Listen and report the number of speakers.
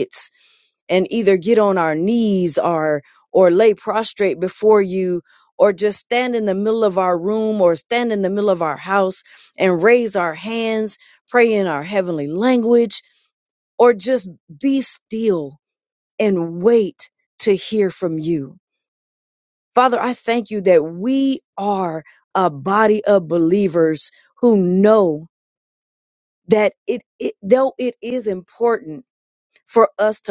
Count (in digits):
1